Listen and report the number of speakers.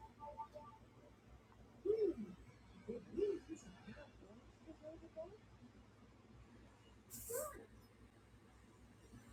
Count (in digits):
0